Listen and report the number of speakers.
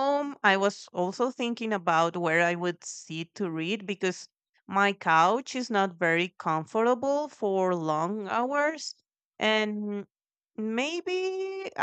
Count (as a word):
one